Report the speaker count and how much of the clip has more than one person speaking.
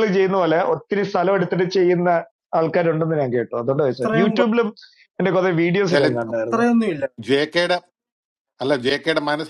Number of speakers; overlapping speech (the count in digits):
3, about 12%